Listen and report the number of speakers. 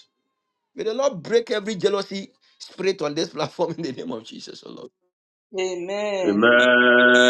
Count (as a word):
three